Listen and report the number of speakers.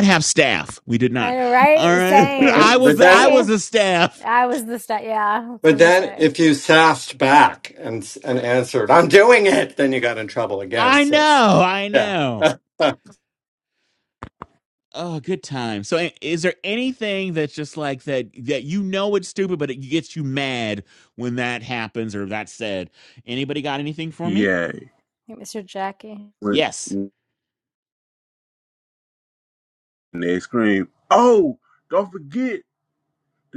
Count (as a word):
four